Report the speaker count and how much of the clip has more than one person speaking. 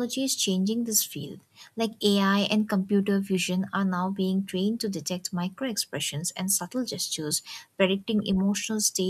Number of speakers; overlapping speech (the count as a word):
one, no overlap